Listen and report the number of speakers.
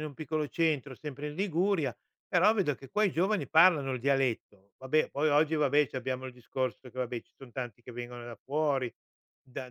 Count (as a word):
one